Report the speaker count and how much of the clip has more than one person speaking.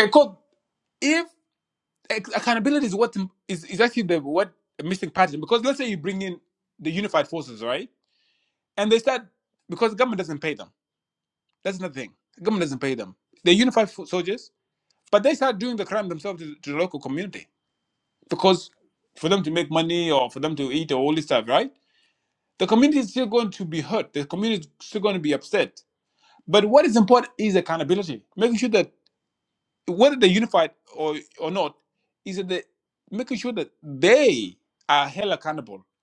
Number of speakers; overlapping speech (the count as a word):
one, no overlap